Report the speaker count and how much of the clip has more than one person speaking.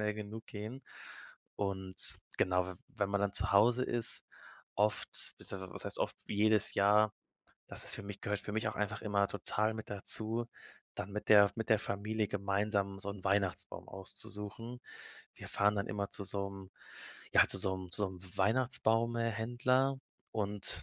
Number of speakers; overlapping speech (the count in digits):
1, no overlap